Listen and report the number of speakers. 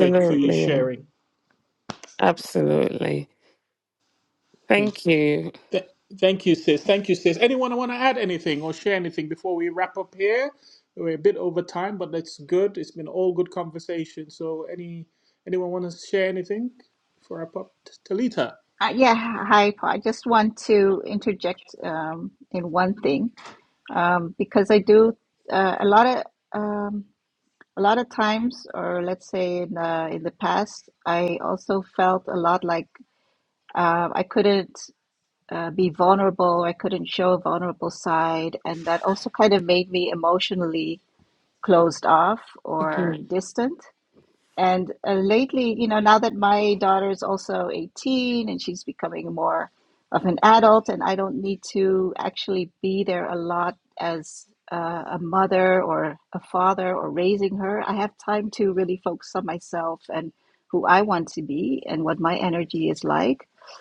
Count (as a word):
three